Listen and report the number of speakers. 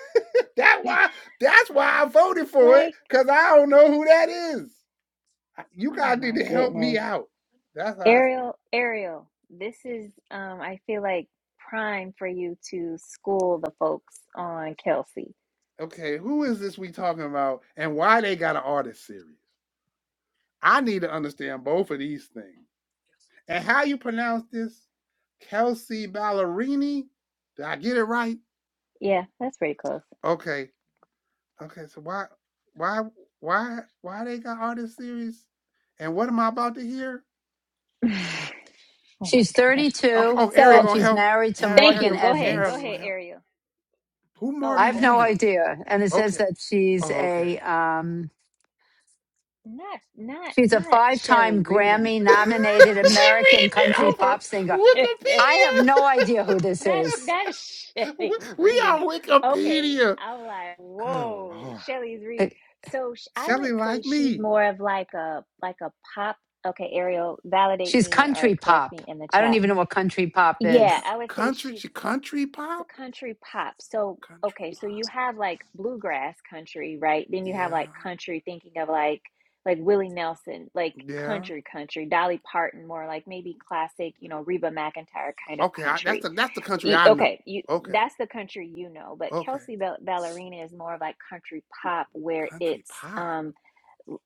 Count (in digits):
3